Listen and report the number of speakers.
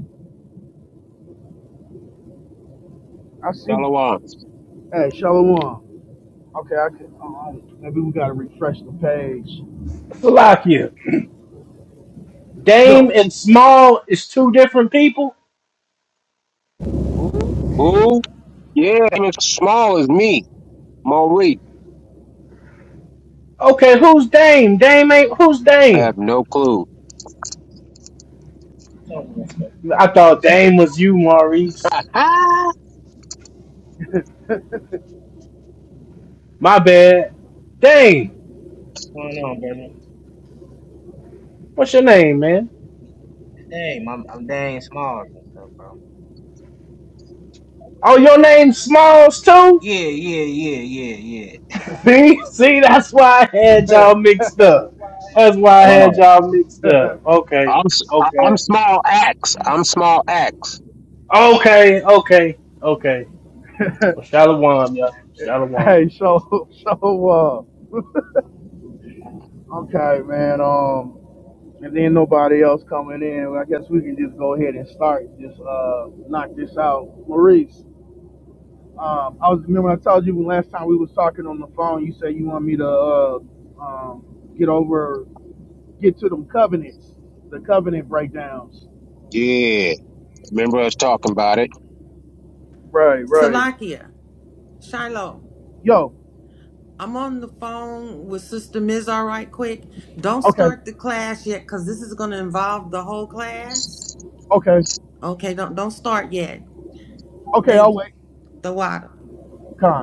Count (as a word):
five